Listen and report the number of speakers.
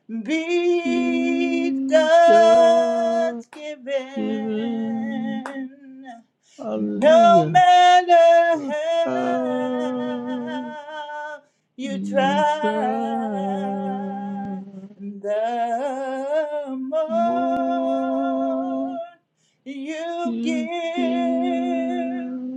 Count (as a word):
two